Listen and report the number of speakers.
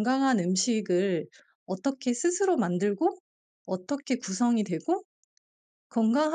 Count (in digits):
1